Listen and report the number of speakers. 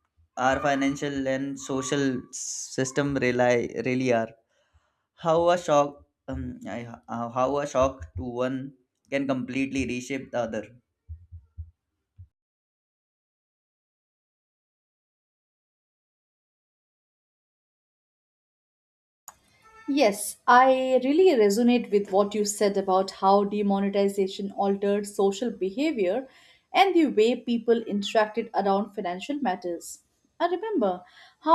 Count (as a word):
two